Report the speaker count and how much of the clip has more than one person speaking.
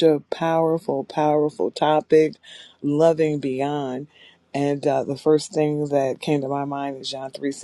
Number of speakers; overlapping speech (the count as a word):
one, no overlap